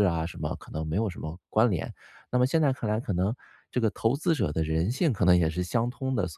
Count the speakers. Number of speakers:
1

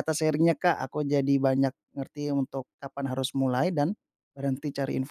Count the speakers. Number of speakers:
1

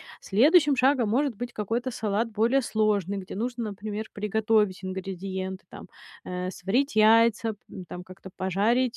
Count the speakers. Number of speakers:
1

